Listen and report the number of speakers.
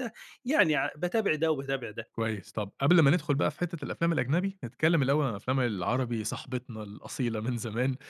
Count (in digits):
2